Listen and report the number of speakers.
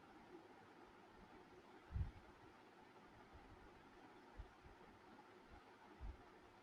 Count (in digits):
0